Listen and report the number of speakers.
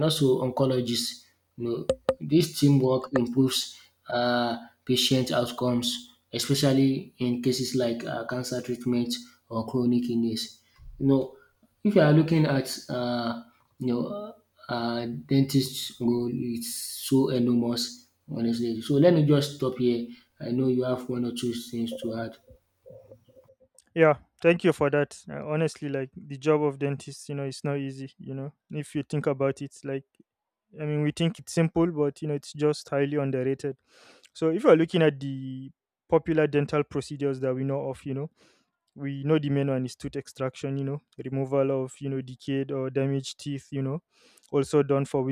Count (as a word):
two